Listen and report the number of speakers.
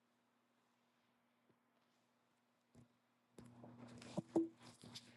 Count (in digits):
0